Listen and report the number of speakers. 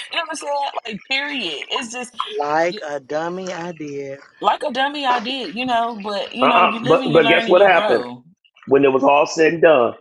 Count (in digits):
3